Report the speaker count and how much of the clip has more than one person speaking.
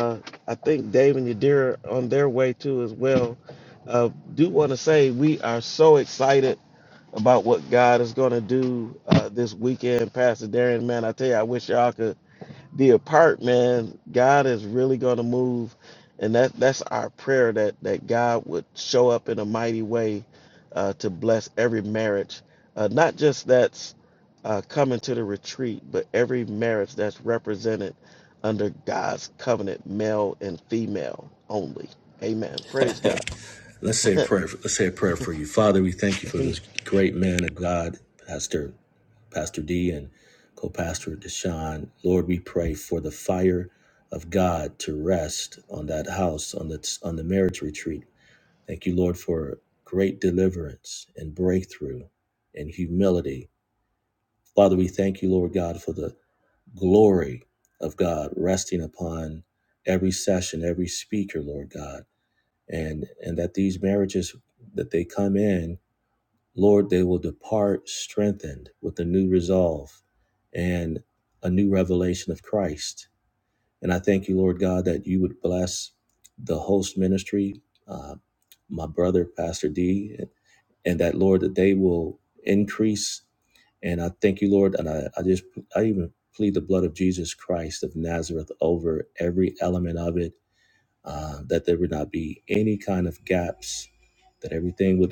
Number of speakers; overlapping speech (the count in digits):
2, no overlap